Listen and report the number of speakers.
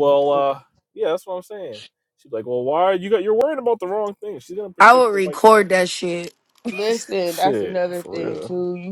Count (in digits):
3